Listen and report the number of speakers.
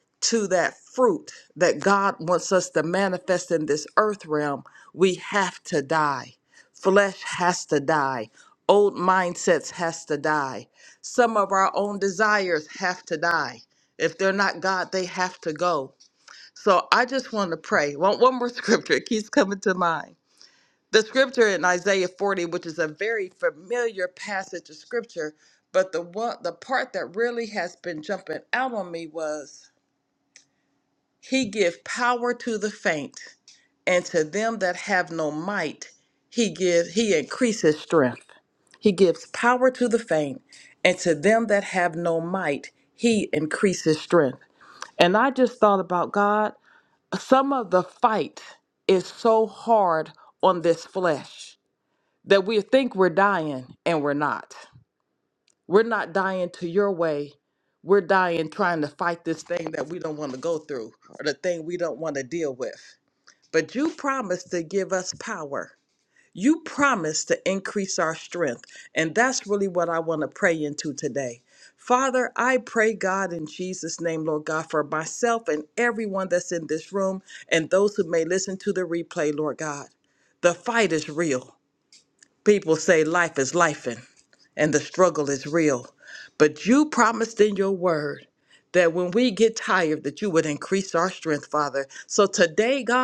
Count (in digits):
1